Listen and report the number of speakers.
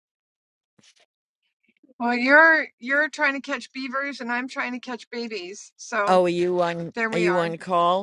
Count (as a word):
two